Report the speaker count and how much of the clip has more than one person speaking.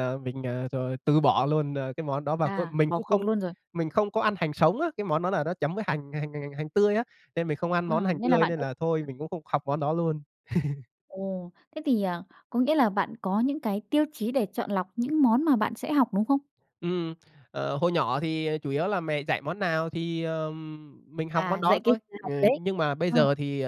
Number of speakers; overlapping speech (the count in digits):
2, about 13%